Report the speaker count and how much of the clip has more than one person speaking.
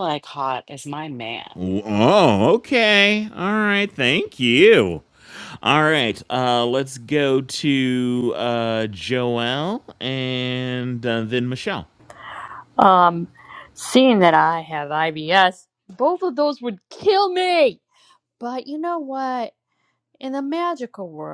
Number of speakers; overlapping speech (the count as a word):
three, no overlap